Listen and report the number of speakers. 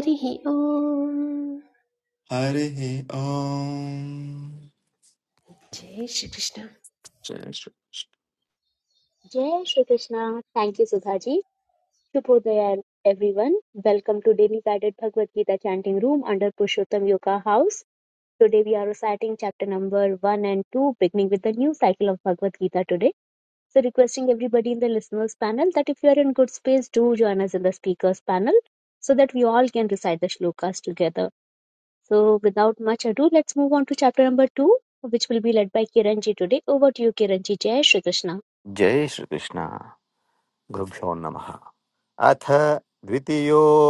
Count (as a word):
four